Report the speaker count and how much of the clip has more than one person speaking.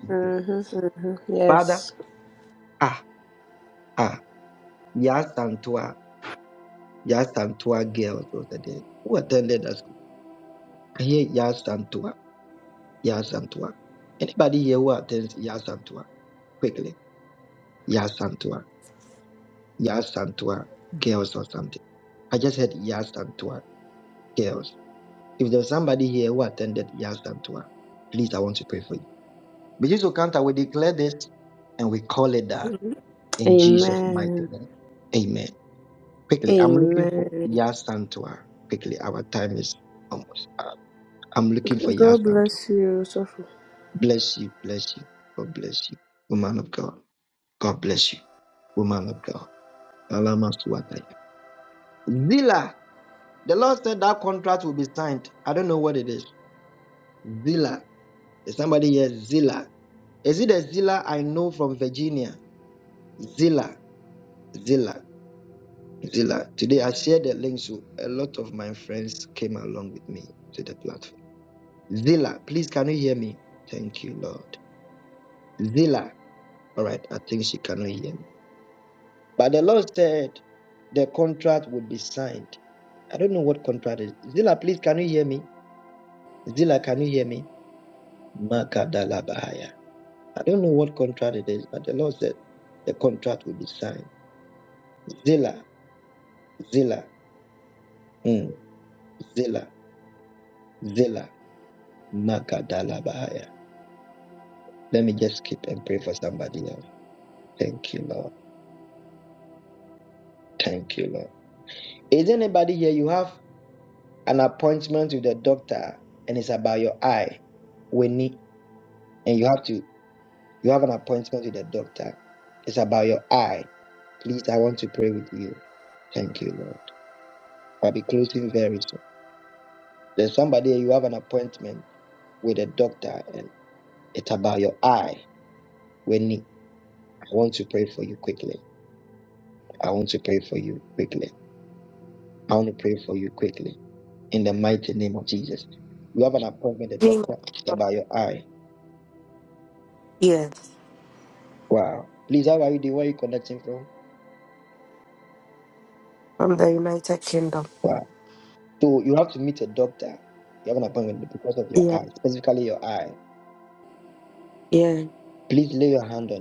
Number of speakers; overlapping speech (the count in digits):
3, about 2%